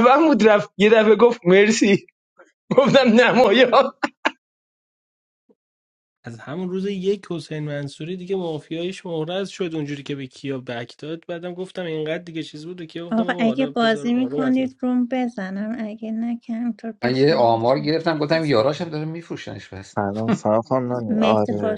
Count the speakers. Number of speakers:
five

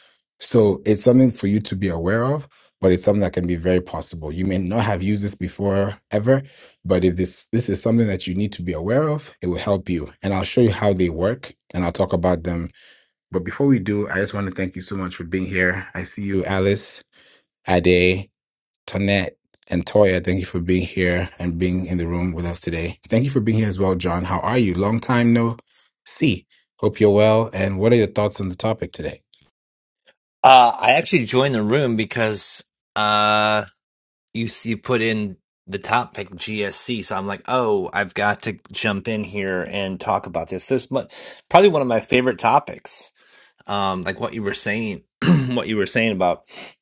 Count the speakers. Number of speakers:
two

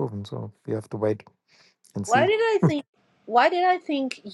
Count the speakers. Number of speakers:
two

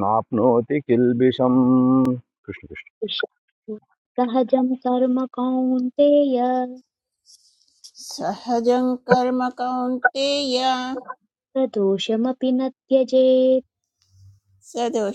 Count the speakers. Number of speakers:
three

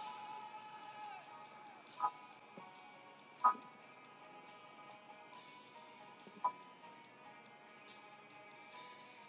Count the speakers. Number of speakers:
zero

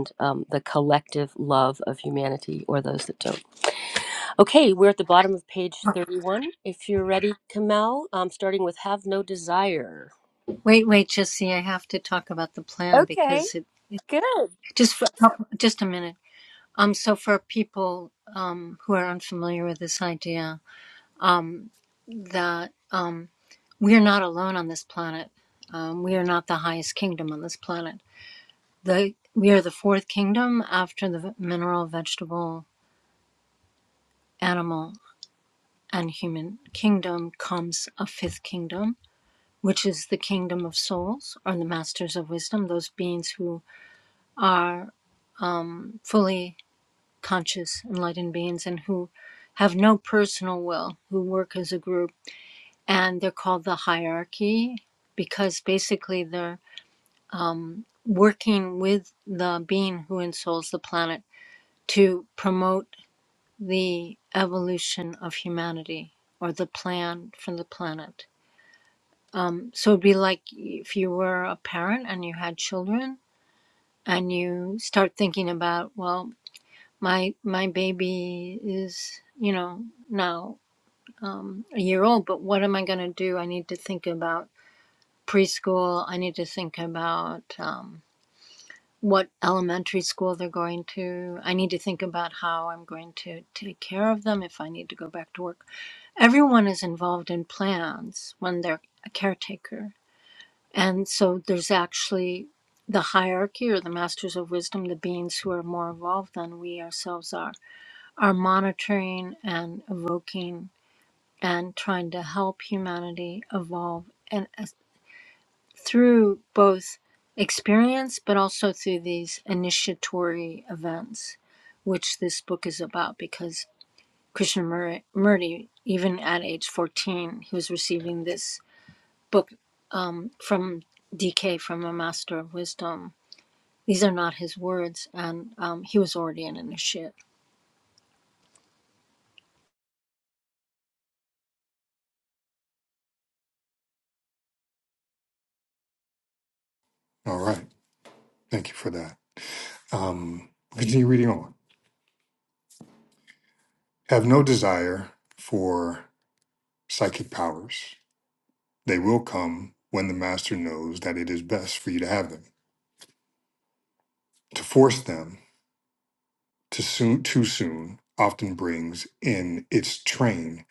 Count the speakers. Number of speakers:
three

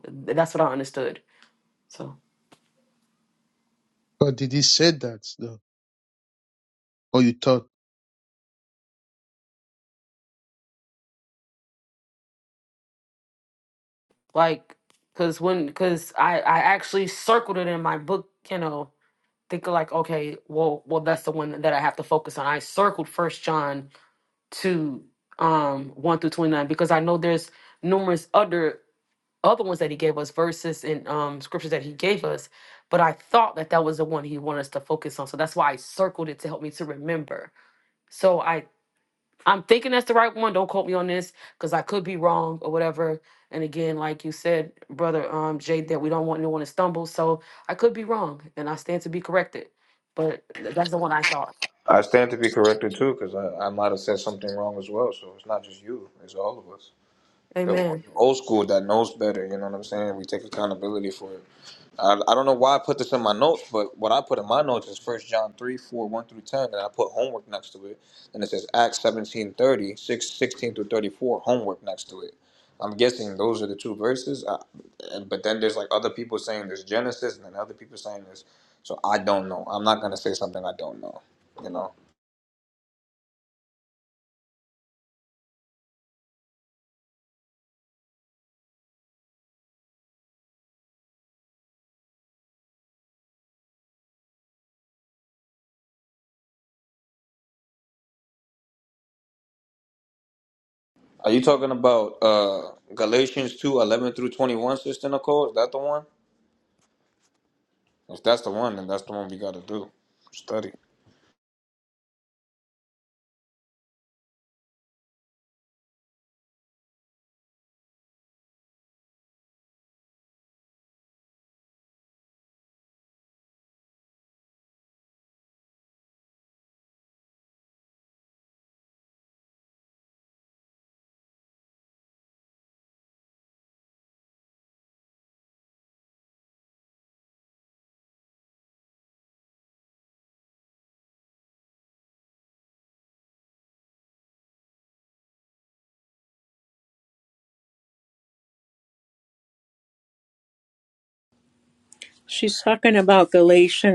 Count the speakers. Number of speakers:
four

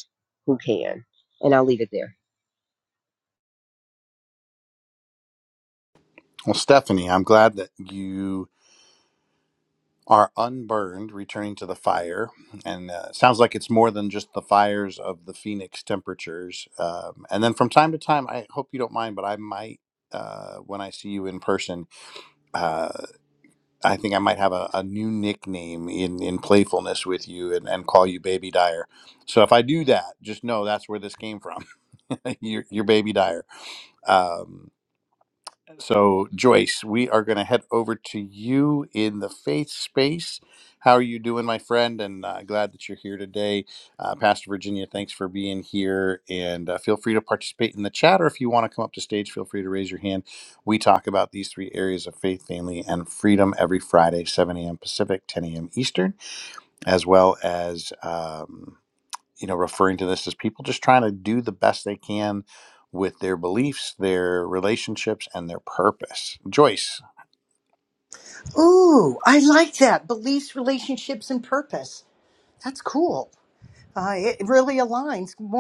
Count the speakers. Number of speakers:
three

